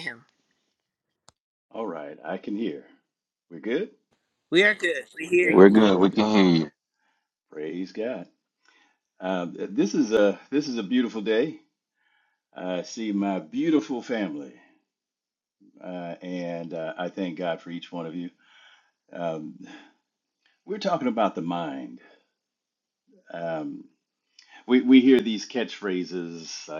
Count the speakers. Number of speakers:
3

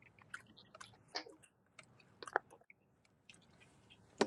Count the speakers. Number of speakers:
0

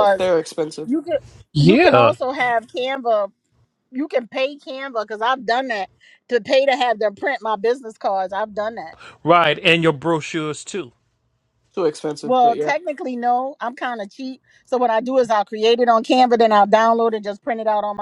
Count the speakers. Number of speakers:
3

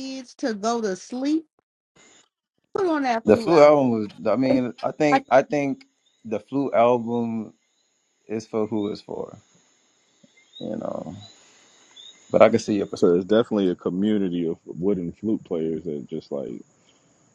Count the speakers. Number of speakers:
3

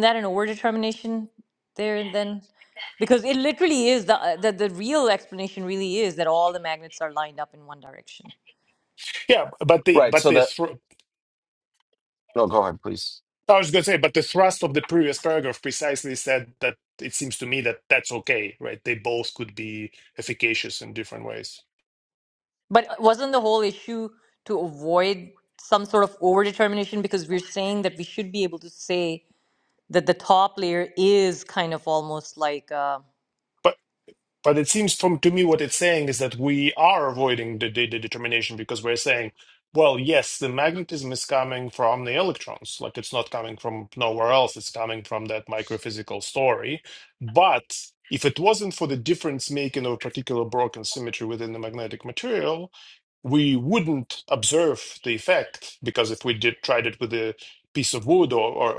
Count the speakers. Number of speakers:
3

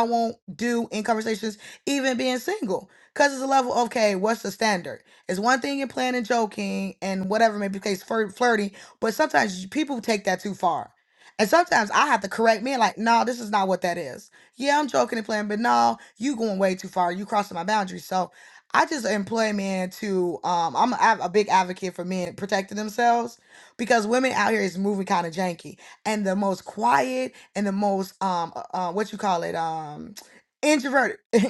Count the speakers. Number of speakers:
1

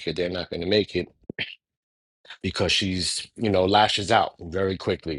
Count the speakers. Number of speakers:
1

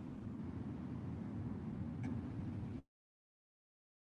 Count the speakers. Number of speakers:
0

